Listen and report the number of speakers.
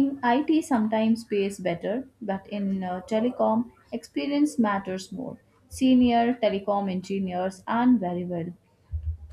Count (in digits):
1